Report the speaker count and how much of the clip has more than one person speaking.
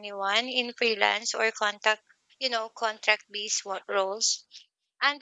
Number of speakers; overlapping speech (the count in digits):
1, no overlap